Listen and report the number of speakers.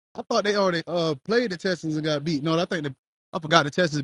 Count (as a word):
one